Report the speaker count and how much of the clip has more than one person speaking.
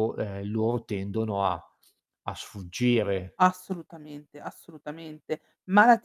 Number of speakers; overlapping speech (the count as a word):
two, no overlap